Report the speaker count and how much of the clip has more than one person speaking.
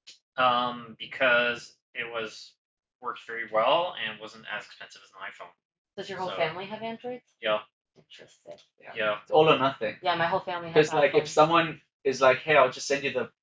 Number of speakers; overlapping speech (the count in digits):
3, about 8%